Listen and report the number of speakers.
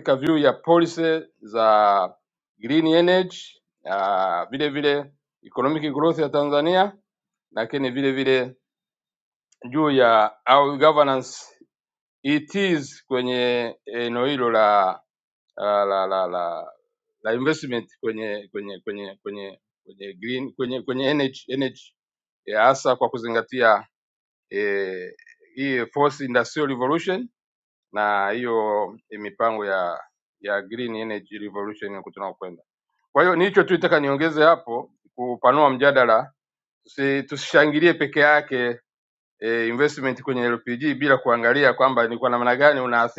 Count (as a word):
one